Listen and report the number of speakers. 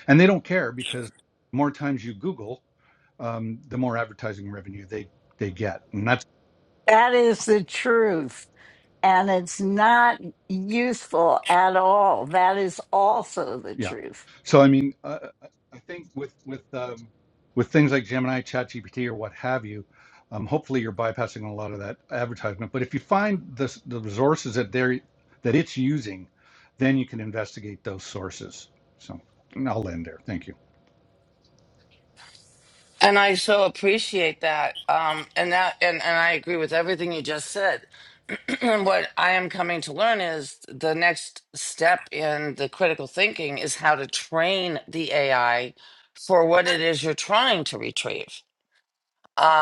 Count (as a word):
three